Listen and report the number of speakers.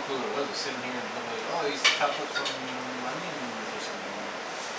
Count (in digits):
1